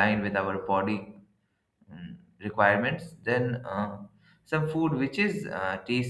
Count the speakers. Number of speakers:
one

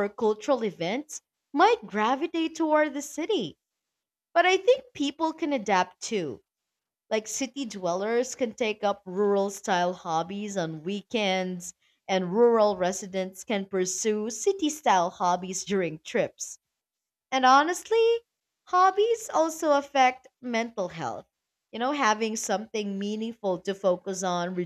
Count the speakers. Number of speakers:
one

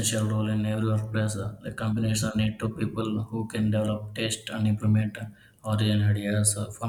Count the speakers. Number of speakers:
one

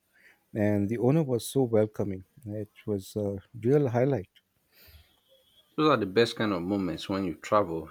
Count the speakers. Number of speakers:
two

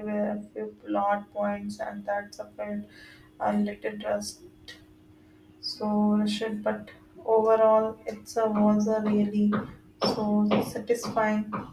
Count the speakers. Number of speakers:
one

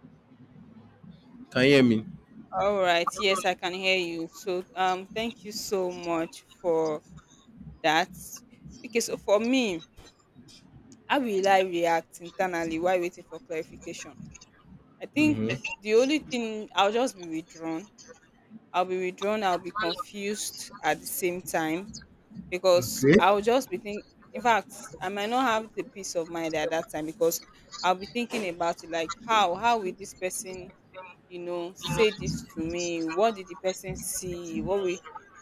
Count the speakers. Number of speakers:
two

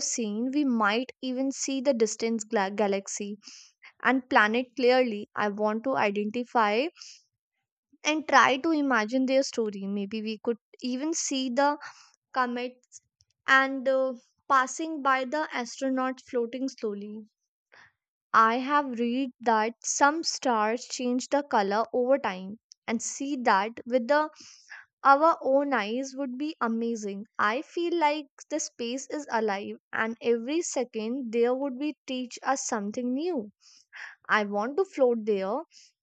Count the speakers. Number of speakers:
one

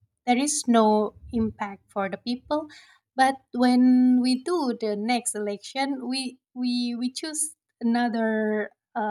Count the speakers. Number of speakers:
one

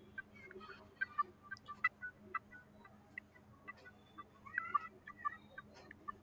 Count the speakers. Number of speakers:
zero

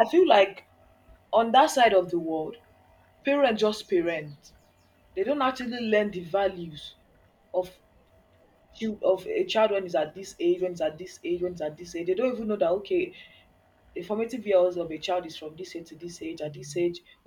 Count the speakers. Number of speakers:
one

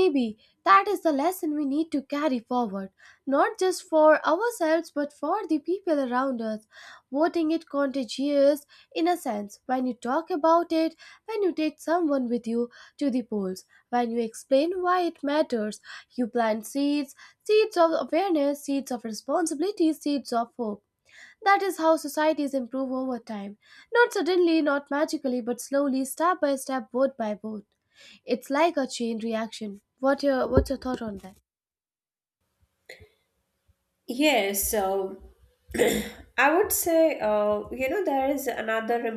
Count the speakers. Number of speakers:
two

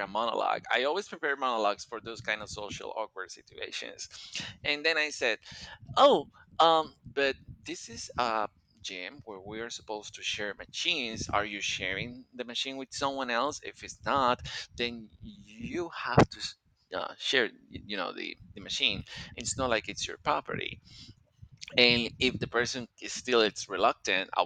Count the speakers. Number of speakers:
one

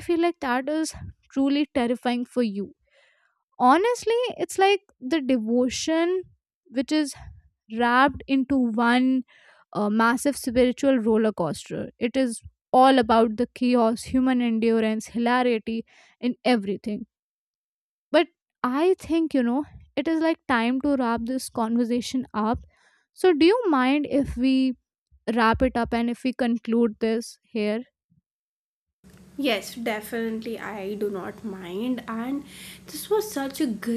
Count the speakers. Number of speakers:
two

